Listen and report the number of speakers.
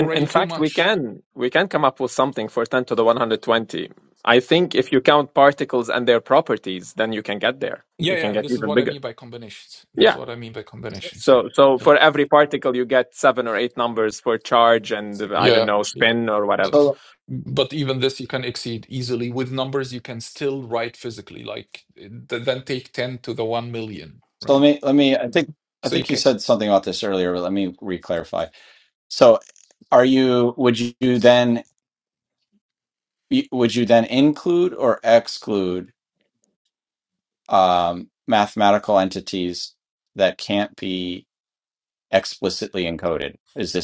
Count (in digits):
3